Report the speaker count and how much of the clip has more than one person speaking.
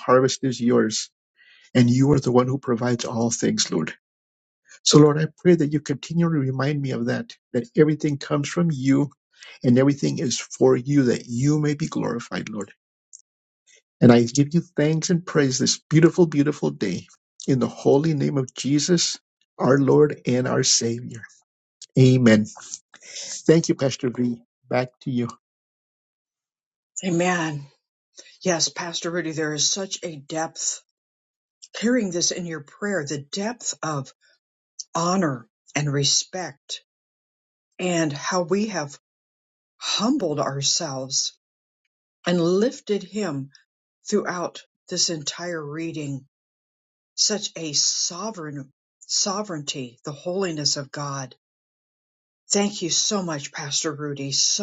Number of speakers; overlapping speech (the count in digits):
2, no overlap